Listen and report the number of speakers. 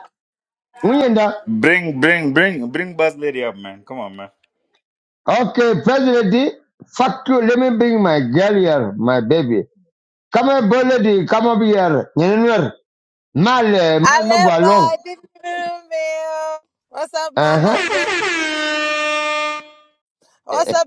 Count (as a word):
three